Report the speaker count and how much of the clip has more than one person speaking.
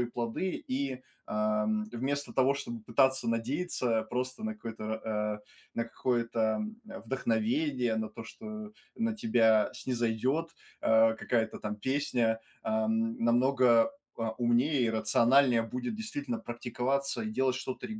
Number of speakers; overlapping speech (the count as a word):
one, no overlap